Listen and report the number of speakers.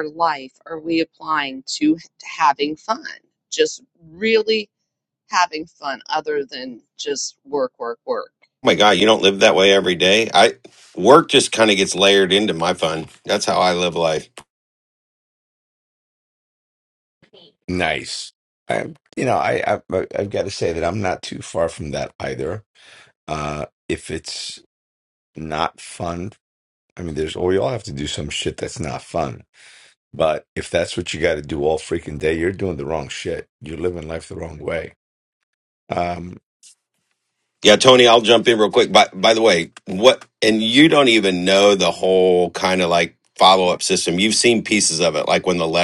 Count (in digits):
3